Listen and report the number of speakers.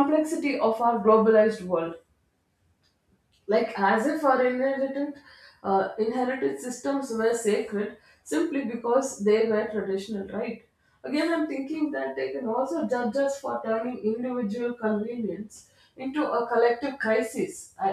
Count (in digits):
1